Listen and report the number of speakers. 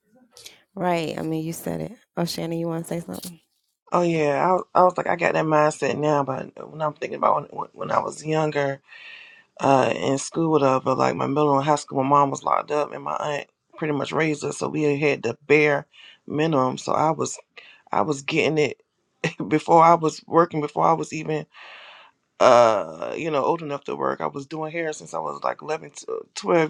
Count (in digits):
2